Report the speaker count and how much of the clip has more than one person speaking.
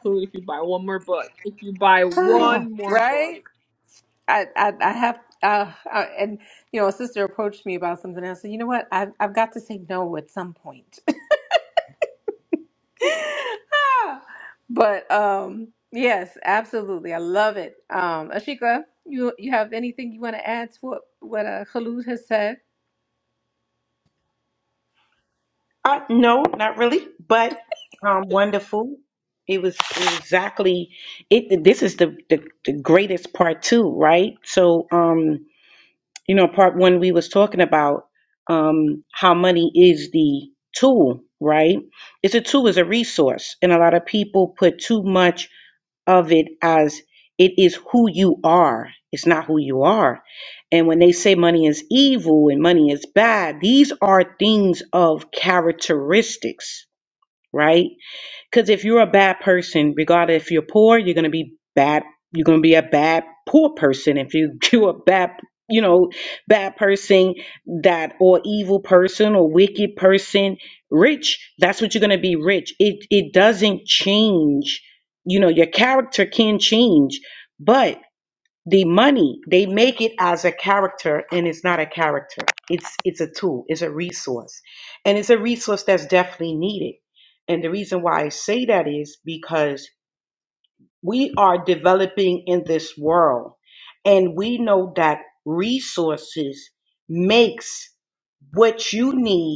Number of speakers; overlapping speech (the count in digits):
3, about 1%